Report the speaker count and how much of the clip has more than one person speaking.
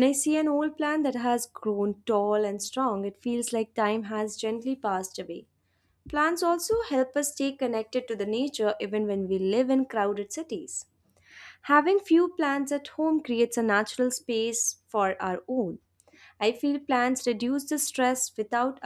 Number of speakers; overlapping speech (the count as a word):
one, no overlap